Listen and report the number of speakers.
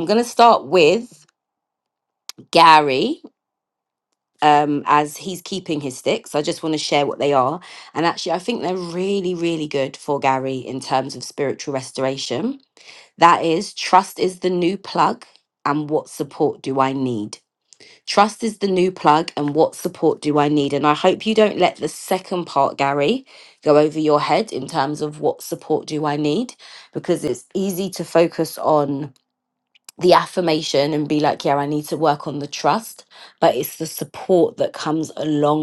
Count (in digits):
1